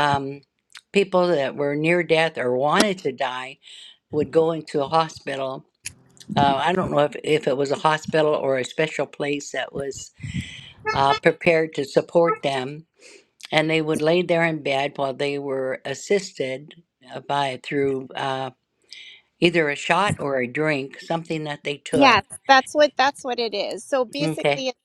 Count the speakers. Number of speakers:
2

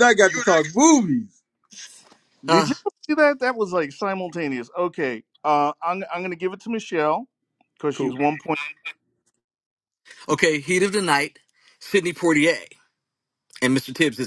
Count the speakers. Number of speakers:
3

